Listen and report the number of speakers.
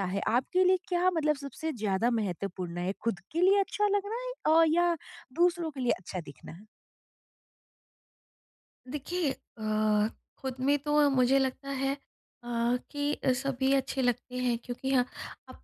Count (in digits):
2